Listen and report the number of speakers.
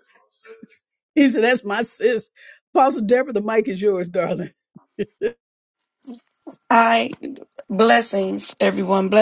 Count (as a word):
two